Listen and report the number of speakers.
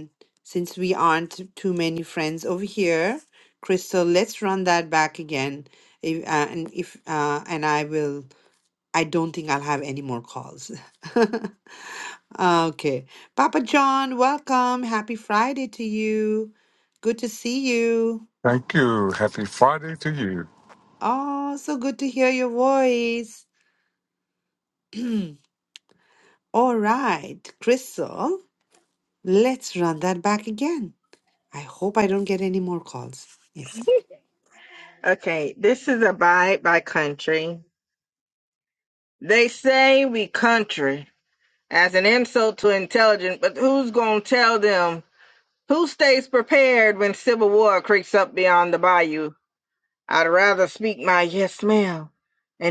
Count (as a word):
three